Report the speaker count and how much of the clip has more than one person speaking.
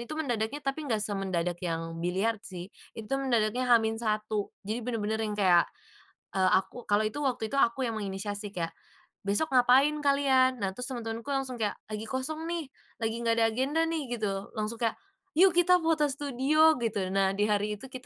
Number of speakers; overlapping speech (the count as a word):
one, no overlap